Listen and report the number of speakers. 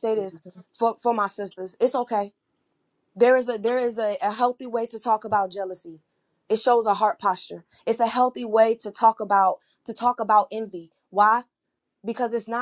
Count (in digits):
1